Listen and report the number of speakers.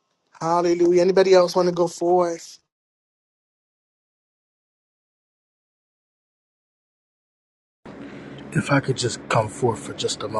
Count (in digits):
2